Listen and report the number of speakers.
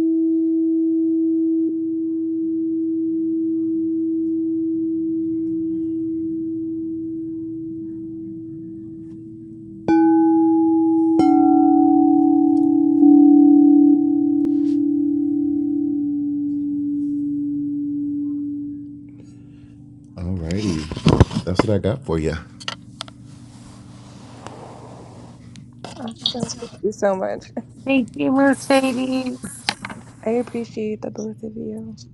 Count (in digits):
3